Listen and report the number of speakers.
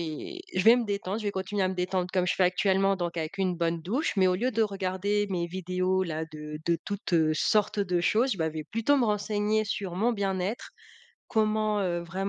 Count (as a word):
one